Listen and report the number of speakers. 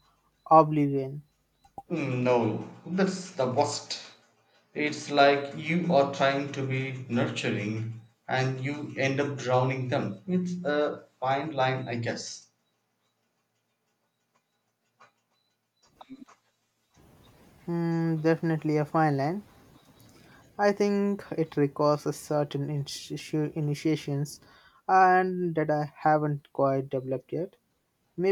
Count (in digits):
2